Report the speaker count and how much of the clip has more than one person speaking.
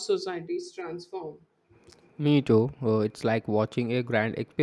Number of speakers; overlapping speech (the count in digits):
2, no overlap